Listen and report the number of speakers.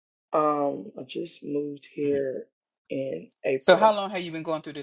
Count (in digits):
2